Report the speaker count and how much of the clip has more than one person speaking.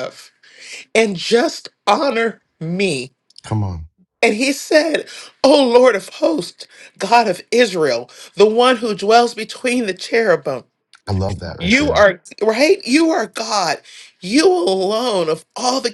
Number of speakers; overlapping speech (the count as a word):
two, about 3%